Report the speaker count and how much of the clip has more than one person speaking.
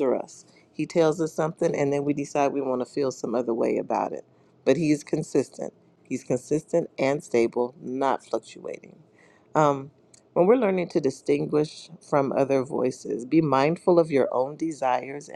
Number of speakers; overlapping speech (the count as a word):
one, no overlap